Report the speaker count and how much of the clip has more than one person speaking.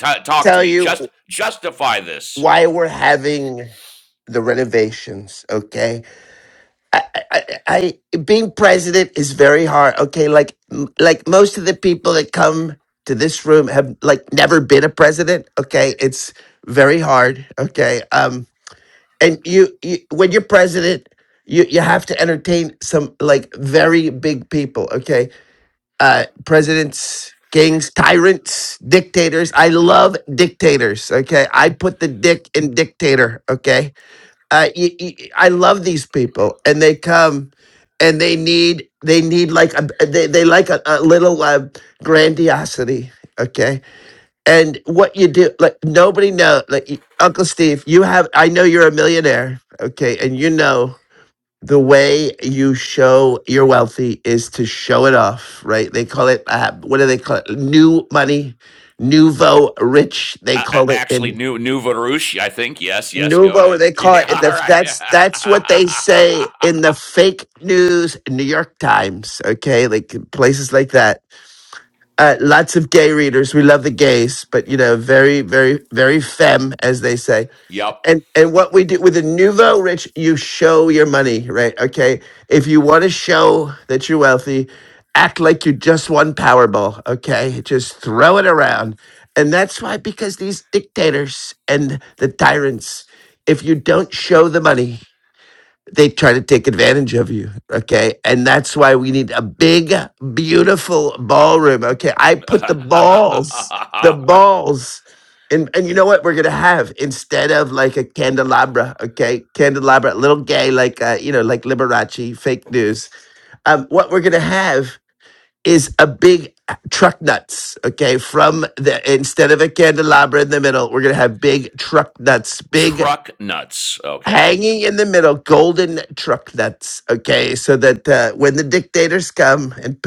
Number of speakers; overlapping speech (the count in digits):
2, about 3%